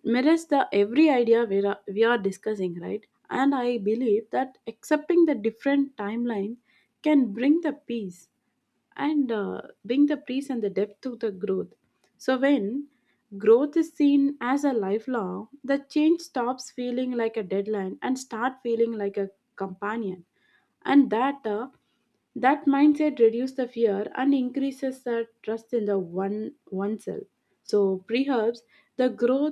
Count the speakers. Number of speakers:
1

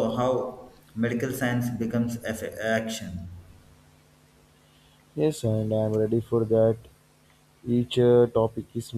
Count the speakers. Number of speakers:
2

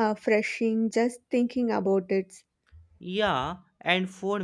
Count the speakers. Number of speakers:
2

